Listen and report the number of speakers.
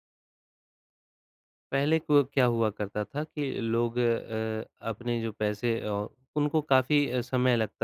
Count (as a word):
one